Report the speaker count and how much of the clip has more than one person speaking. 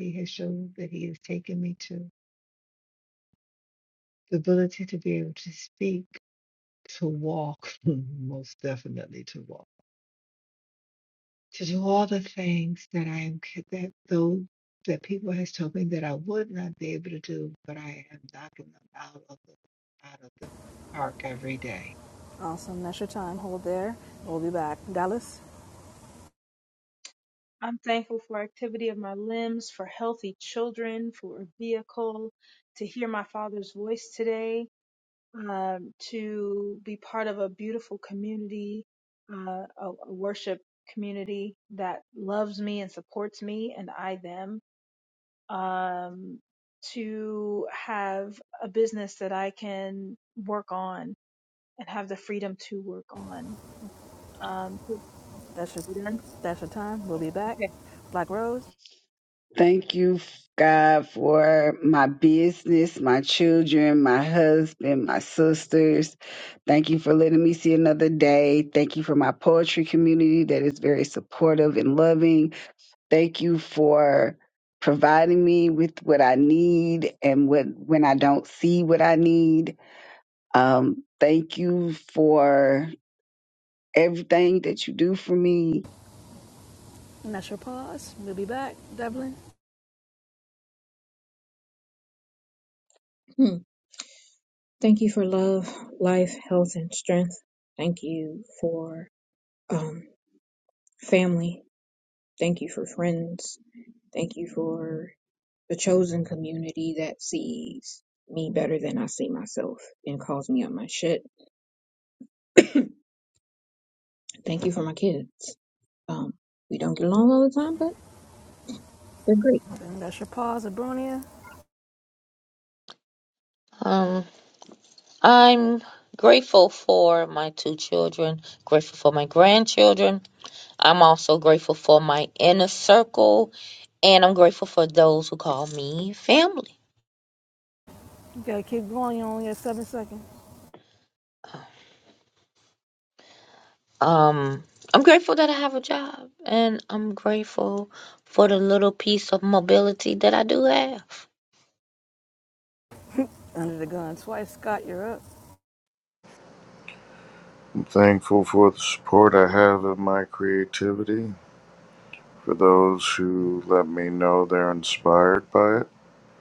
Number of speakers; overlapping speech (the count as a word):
seven, under 1%